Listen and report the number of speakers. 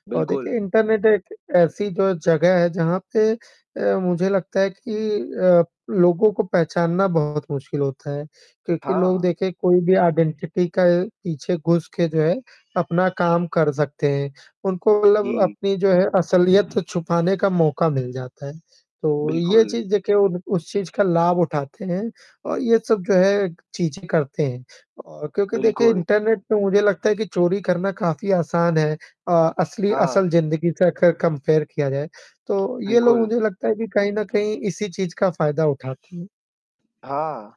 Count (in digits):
2